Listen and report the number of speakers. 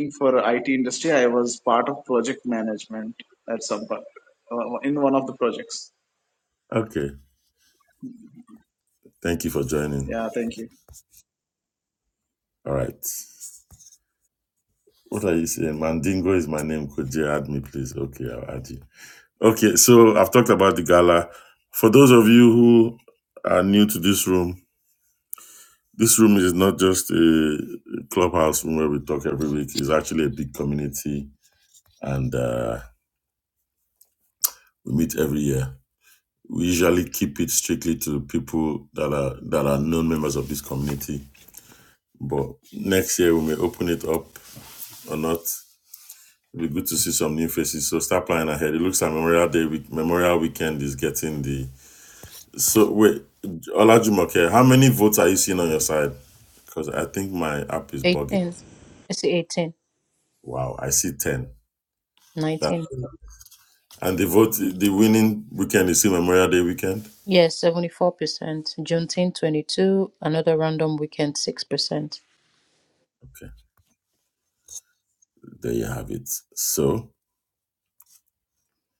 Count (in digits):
3